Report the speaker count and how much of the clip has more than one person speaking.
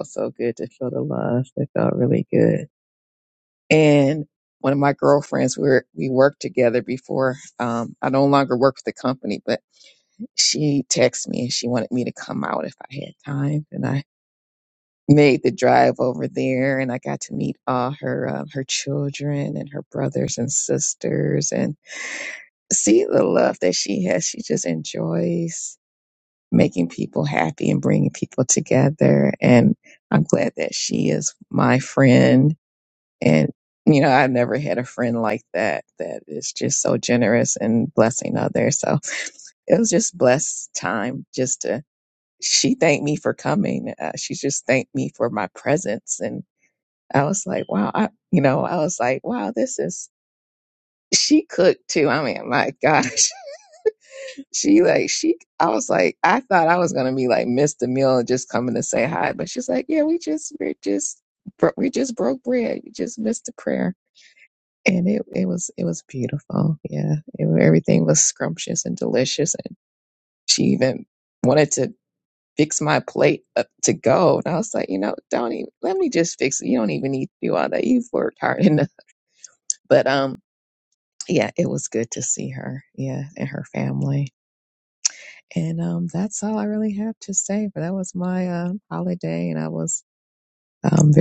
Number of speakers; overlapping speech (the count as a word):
one, no overlap